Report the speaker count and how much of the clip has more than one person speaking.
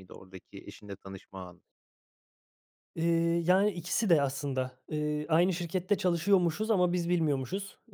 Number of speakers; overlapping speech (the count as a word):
two, no overlap